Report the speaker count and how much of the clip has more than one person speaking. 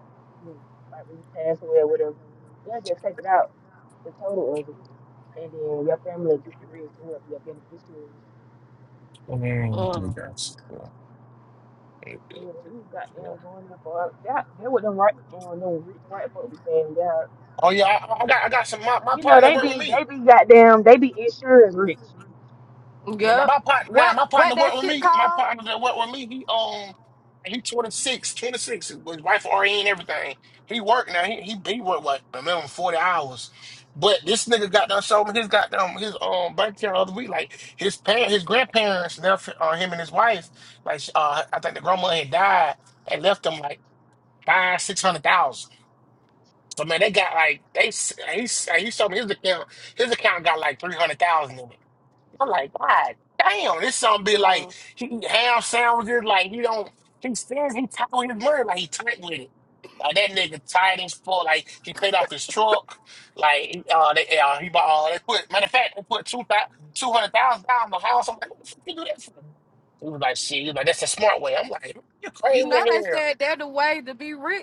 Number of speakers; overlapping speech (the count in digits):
3, about 5%